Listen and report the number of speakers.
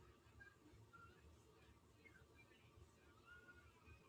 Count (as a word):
zero